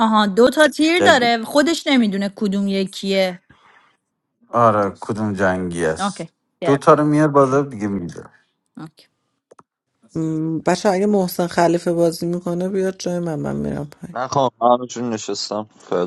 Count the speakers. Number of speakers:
4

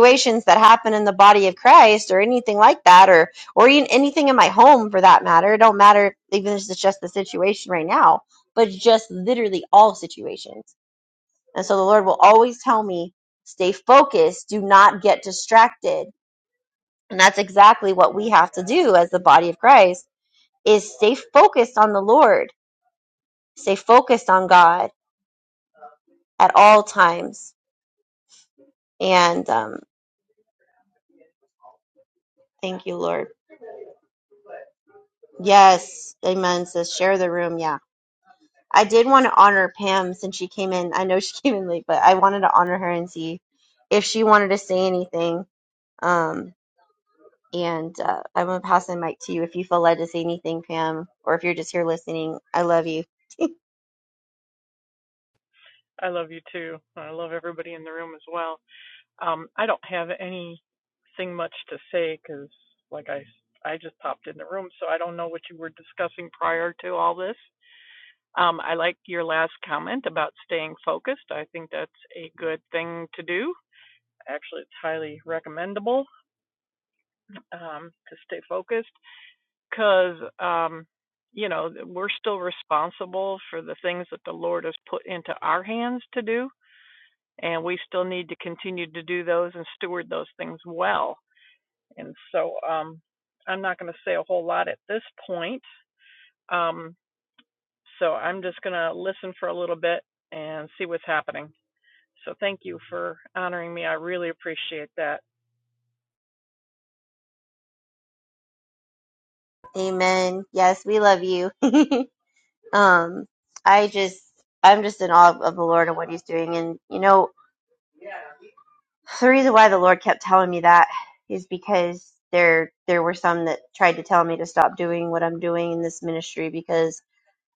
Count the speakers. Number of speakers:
2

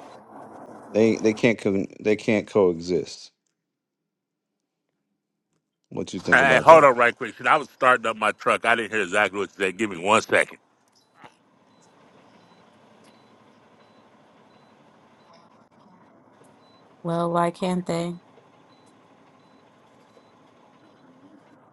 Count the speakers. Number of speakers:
3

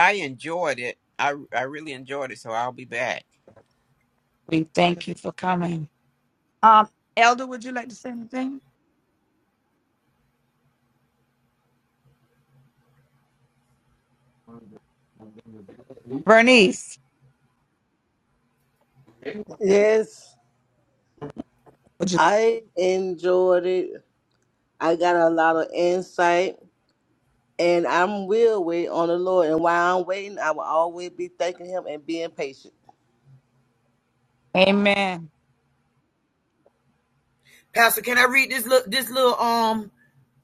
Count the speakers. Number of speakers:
4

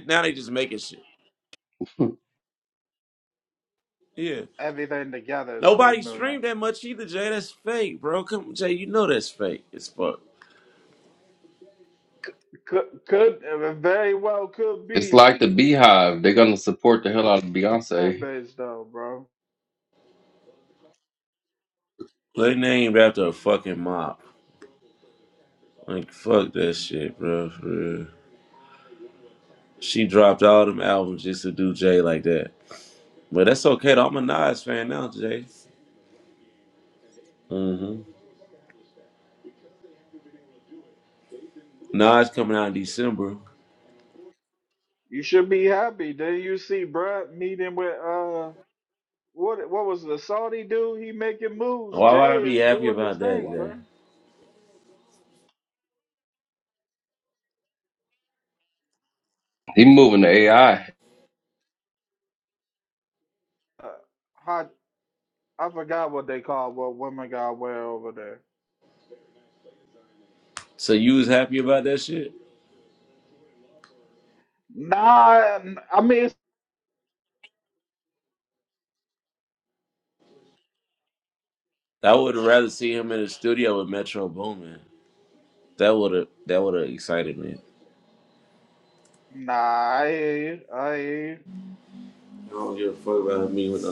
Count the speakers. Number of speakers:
3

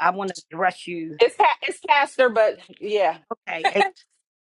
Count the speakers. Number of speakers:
2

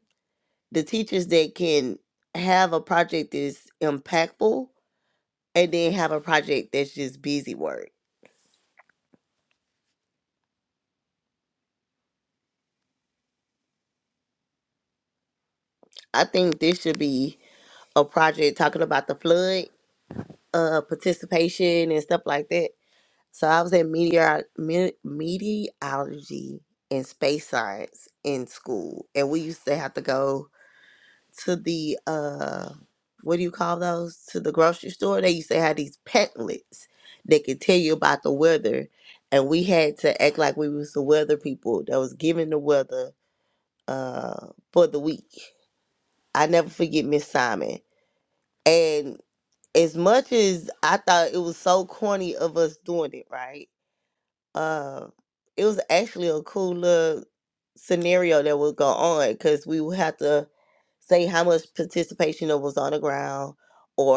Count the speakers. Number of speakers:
1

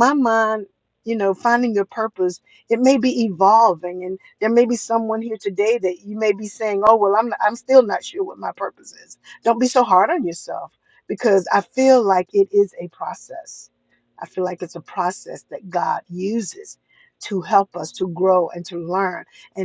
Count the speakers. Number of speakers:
1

